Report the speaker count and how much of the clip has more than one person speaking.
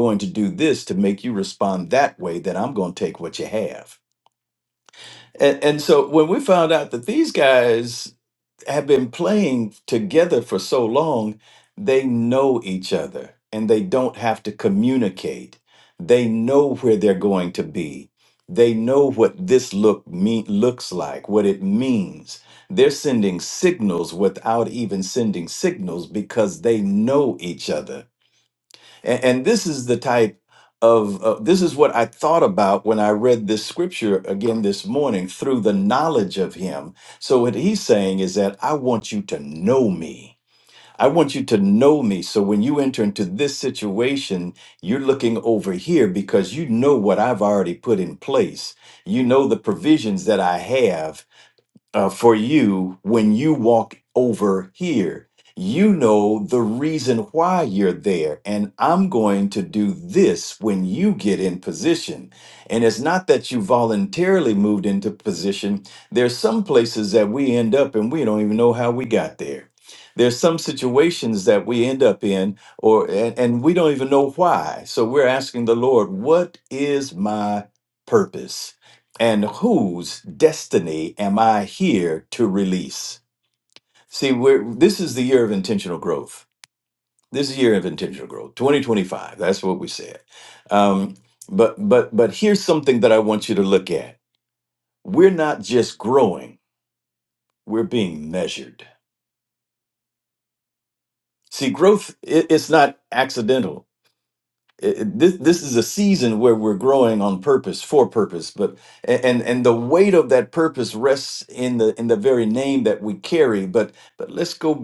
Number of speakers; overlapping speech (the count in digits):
1, no overlap